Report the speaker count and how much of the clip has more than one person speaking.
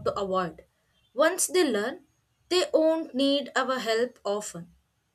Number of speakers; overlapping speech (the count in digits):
1, no overlap